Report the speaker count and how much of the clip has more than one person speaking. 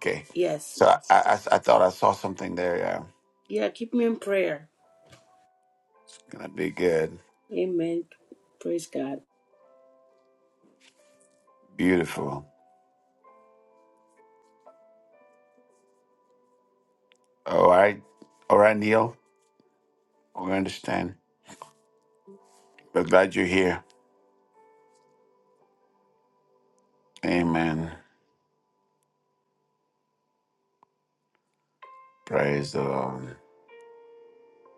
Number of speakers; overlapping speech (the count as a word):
two, no overlap